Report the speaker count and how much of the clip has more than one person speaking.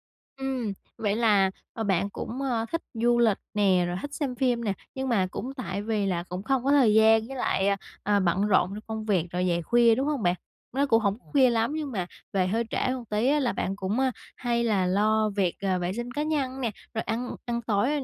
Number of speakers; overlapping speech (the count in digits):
1, no overlap